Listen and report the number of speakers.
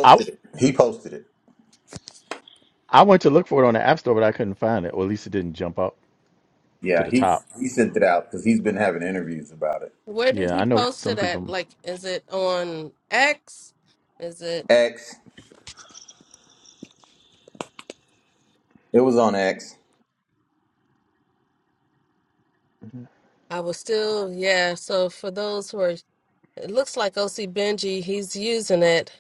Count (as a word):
three